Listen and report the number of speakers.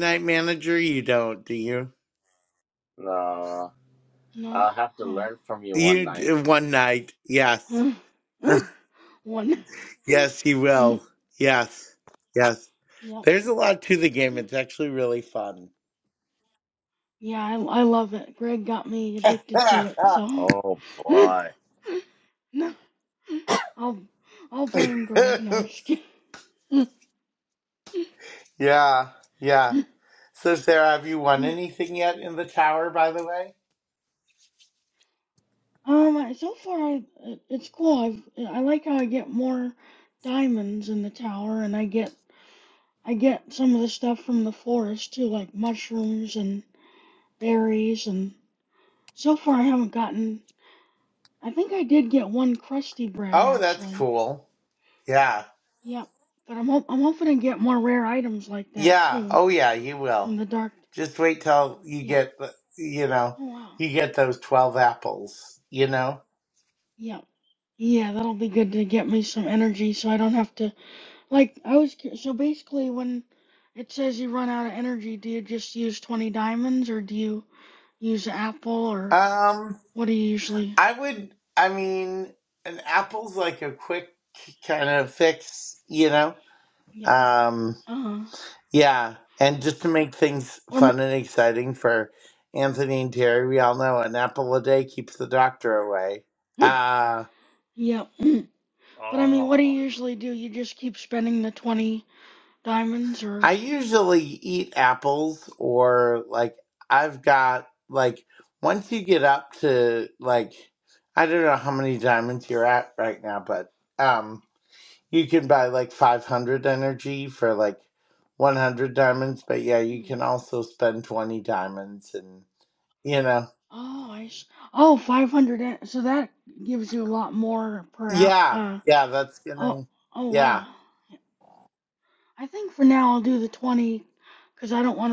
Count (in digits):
3